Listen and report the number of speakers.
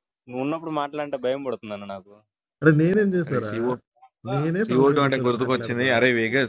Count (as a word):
three